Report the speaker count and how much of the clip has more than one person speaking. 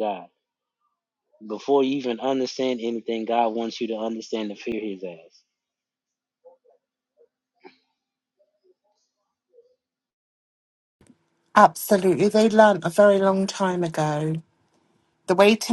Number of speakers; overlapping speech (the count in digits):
2, no overlap